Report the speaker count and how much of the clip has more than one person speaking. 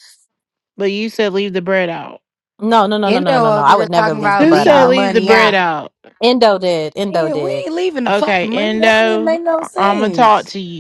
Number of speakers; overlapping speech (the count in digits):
3, about 46%